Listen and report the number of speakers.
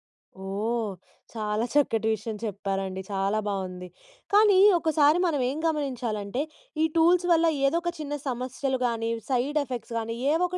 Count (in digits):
1